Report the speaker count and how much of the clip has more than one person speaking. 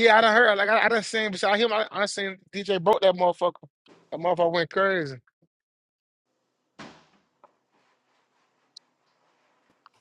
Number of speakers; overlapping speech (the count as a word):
one, no overlap